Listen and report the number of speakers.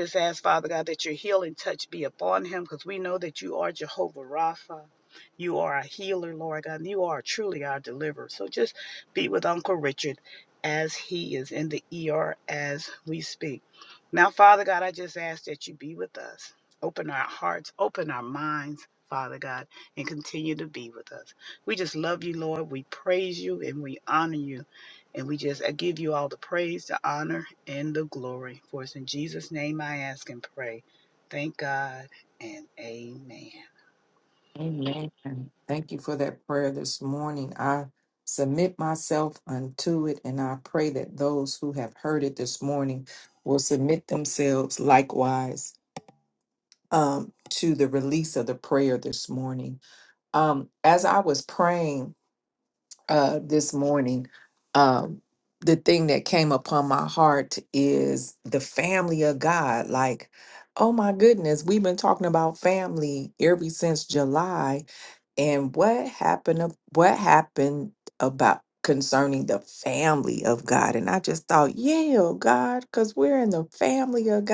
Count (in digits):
2